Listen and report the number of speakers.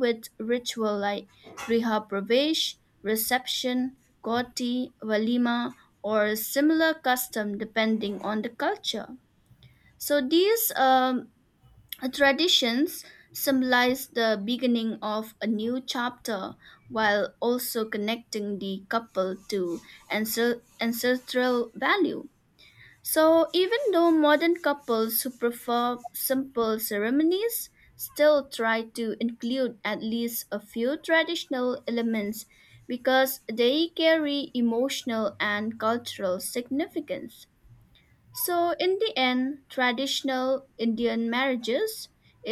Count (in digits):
1